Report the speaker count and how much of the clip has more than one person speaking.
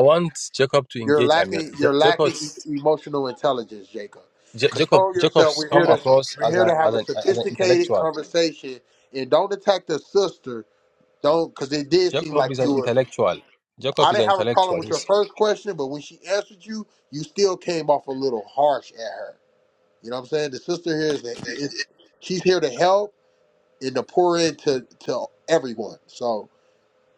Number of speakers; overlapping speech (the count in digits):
2, about 23%